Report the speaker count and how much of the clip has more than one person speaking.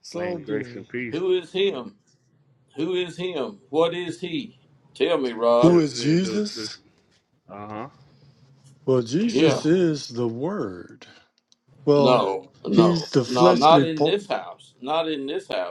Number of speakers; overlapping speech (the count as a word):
three, about 23%